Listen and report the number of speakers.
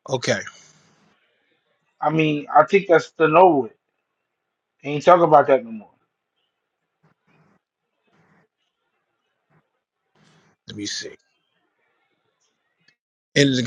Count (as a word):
two